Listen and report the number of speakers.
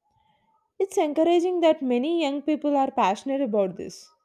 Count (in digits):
1